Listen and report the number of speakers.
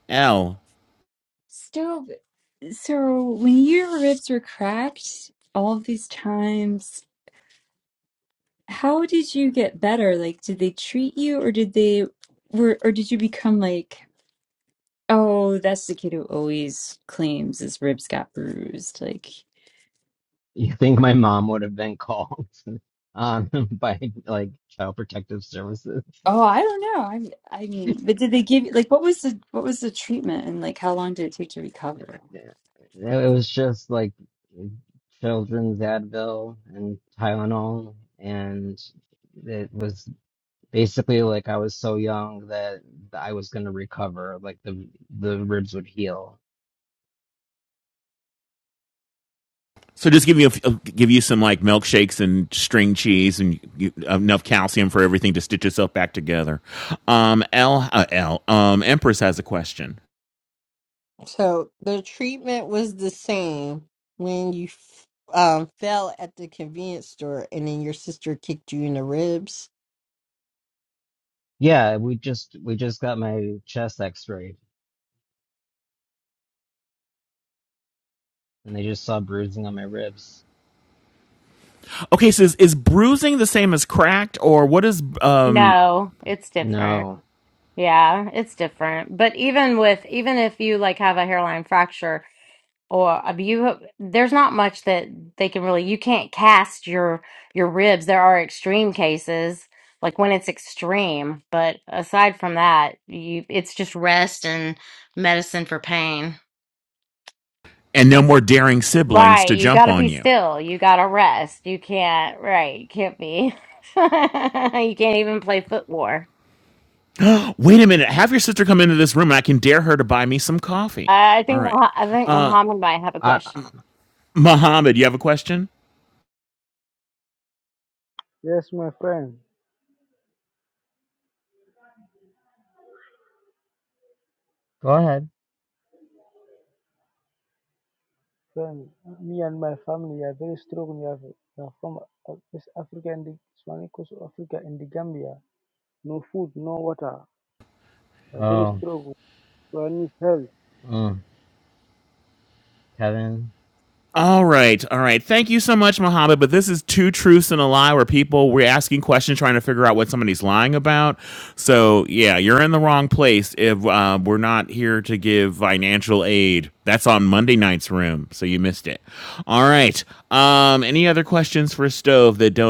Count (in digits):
6